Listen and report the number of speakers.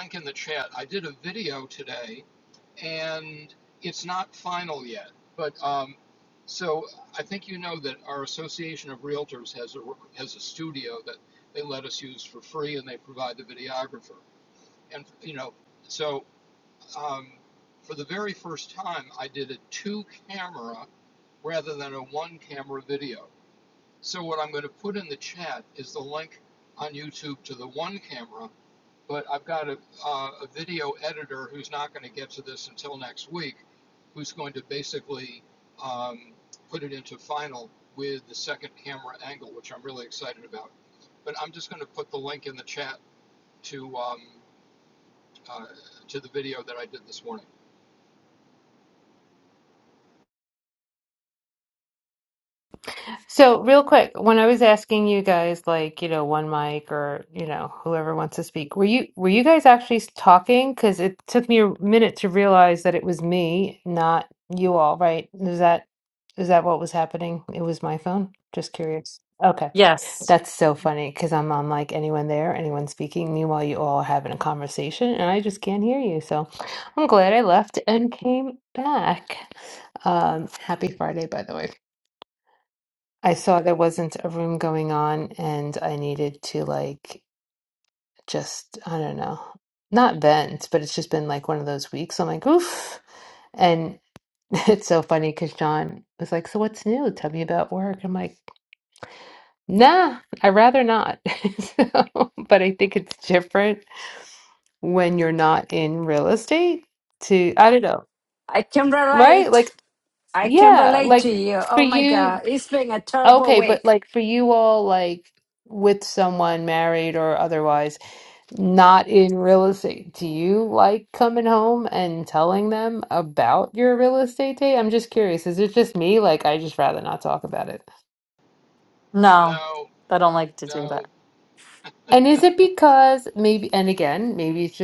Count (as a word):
four